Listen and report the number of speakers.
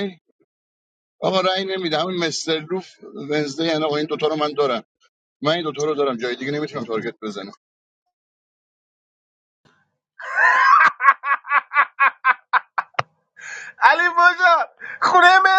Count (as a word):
two